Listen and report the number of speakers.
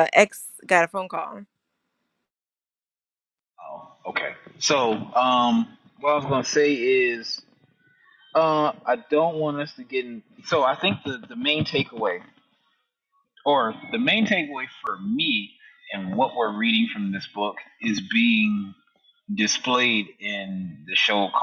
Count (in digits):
2